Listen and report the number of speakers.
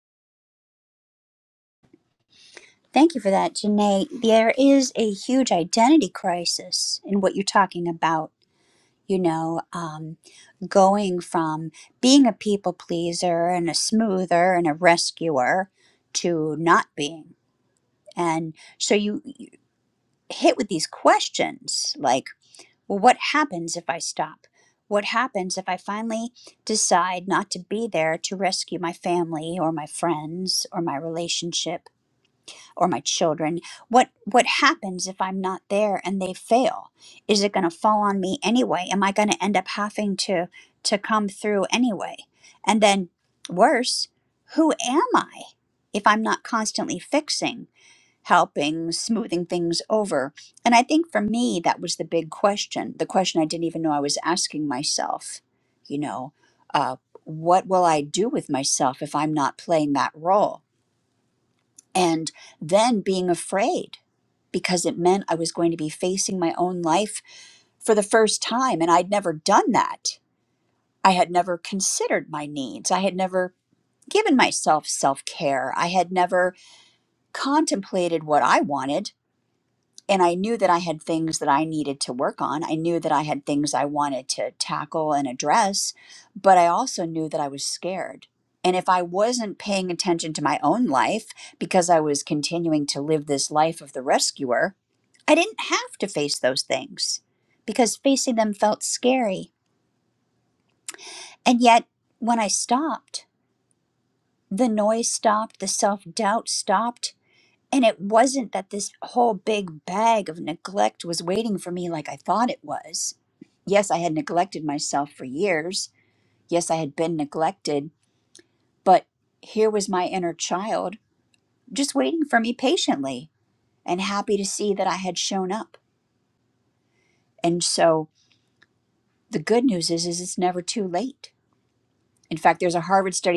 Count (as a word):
one